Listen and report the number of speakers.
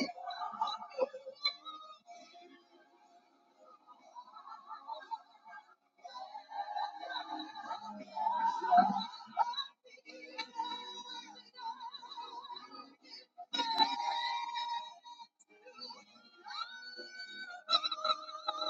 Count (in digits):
0